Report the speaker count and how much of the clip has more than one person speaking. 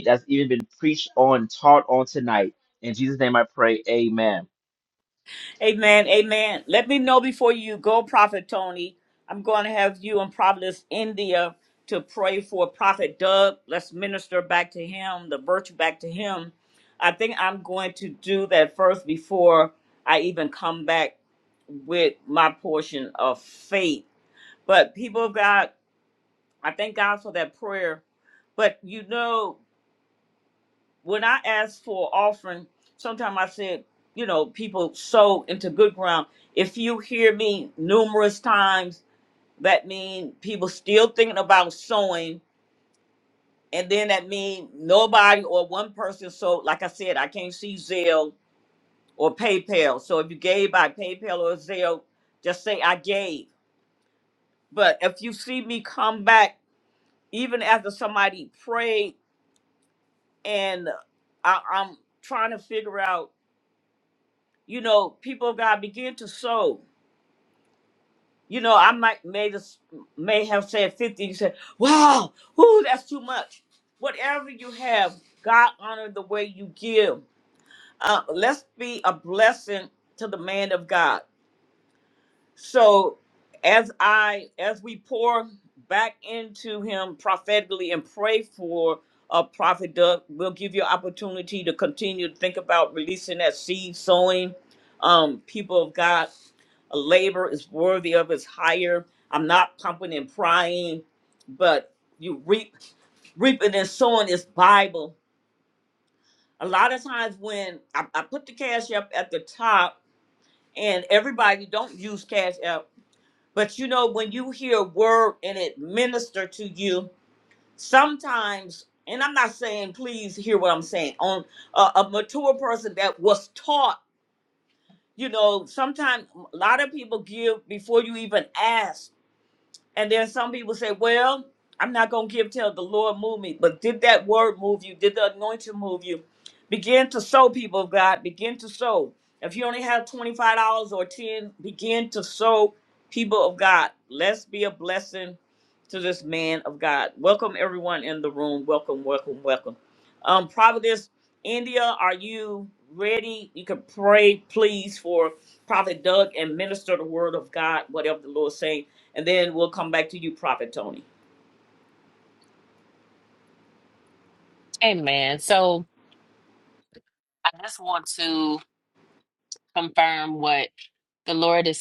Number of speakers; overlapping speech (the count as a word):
three, no overlap